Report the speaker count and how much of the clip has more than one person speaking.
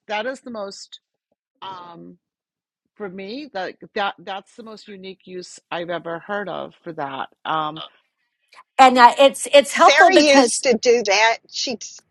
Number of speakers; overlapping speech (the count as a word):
three, about 5%